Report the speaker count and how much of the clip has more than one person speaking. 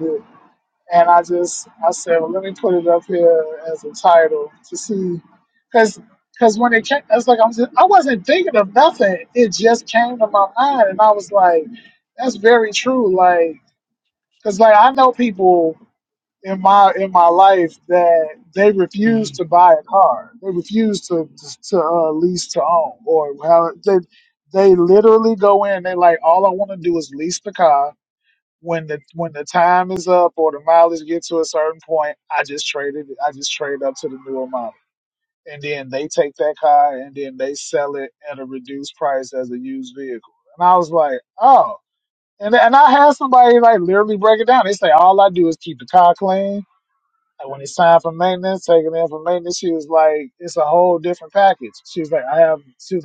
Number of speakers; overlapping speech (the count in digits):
1, no overlap